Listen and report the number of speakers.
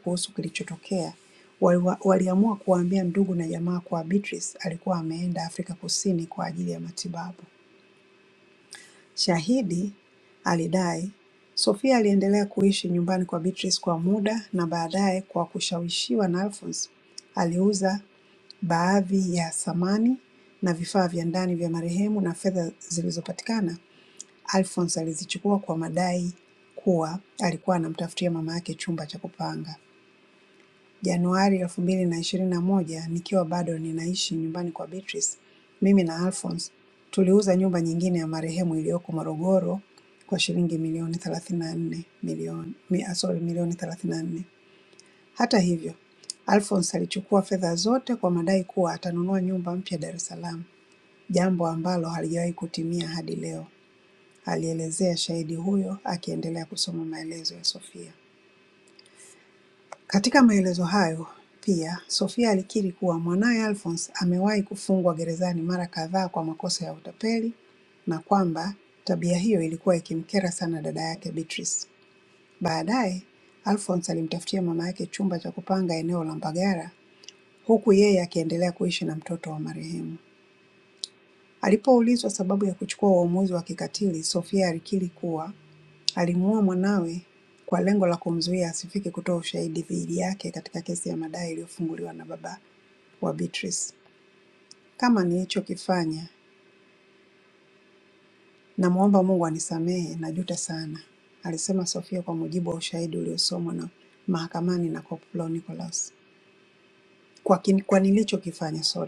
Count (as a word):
one